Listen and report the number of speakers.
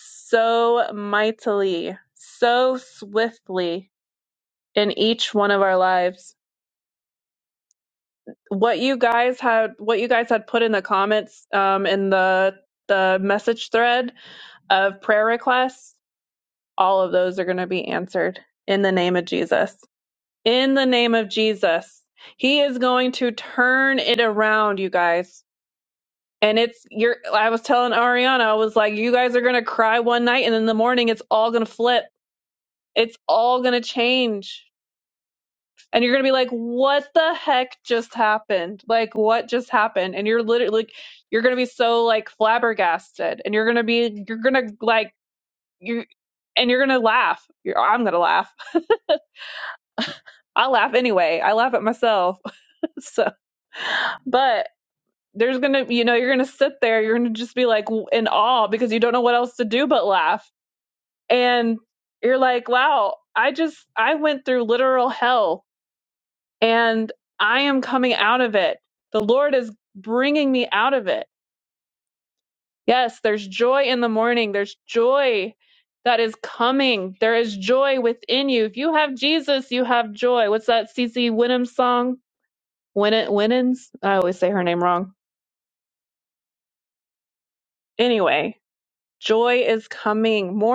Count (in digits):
1